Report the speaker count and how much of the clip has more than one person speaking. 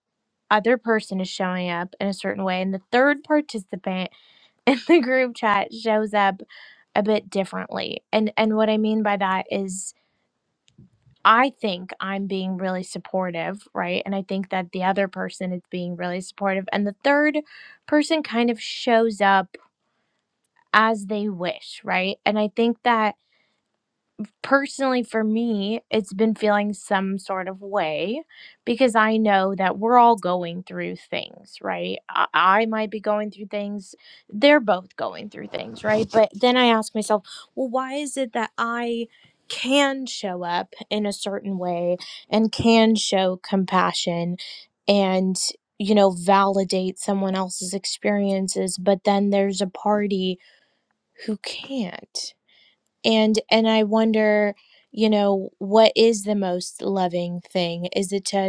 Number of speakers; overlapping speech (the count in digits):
1, no overlap